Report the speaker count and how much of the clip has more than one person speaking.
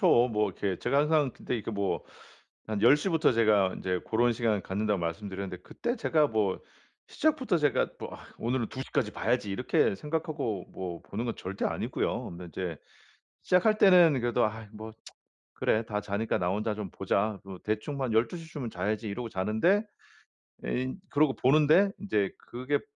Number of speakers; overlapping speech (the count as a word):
one, no overlap